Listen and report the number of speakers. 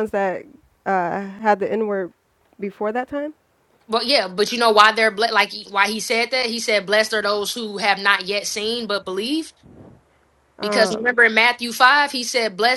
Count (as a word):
two